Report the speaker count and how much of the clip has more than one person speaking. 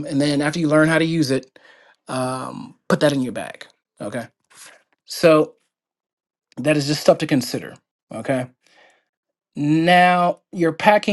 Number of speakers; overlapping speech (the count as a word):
one, no overlap